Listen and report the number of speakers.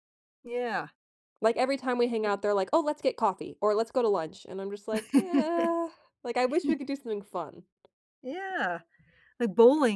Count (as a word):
two